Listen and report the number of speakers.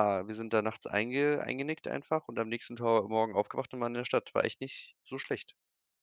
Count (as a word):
one